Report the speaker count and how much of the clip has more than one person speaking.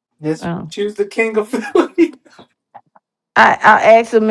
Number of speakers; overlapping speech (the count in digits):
2, no overlap